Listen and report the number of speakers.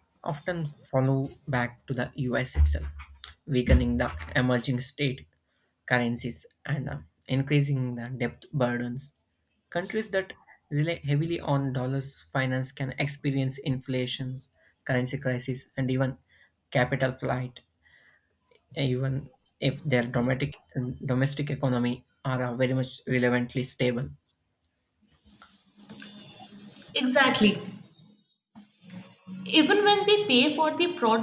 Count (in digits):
2